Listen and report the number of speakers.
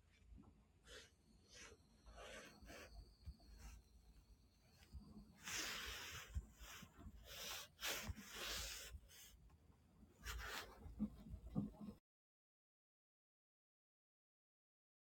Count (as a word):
zero